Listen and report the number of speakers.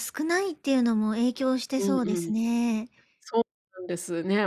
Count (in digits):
2